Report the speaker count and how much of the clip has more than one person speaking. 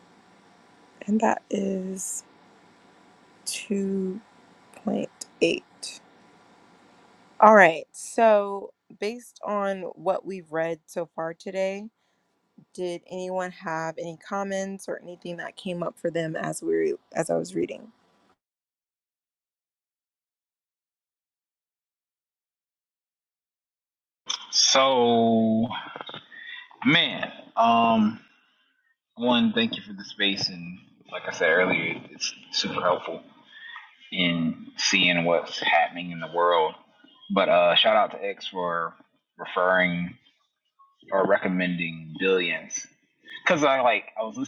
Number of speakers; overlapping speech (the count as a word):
two, no overlap